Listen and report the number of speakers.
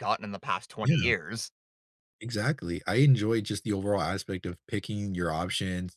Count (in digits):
2